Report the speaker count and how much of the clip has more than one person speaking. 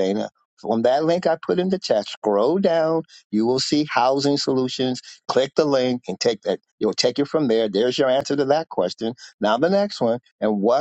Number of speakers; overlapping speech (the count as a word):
one, no overlap